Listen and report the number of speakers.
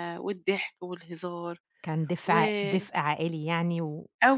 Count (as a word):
two